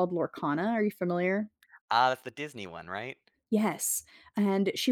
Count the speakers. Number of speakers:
2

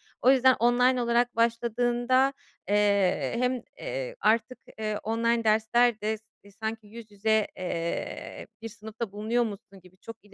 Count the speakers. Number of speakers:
1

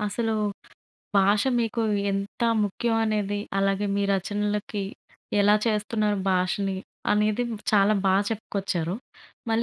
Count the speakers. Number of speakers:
1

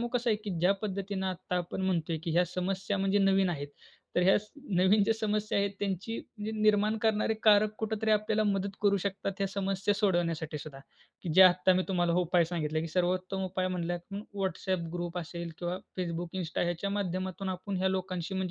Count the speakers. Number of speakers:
1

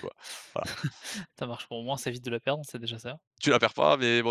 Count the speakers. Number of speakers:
2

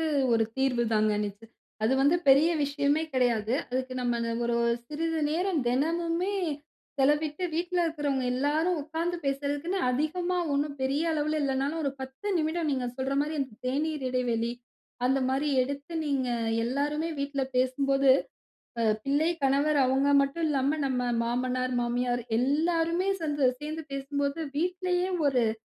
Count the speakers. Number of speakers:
1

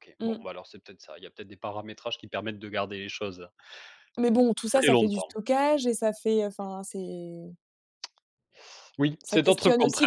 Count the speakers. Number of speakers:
2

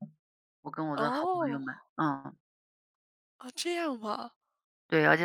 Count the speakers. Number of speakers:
2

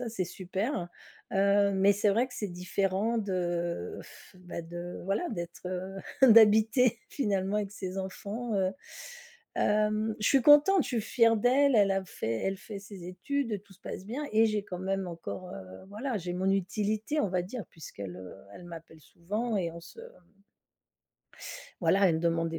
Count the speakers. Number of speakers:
1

